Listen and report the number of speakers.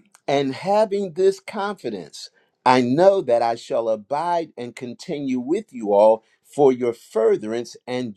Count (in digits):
1